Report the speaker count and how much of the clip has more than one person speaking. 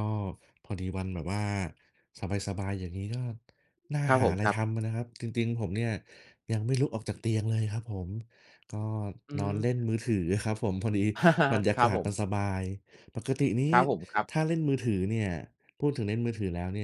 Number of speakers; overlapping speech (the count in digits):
2, about 7%